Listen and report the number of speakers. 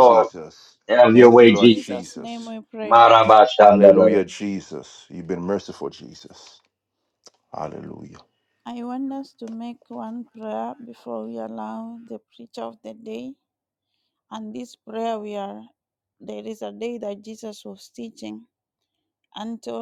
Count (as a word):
three